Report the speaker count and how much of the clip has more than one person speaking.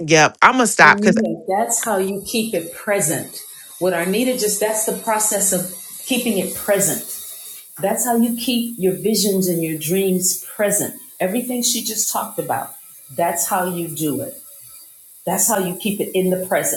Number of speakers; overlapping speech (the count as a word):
two, about 2%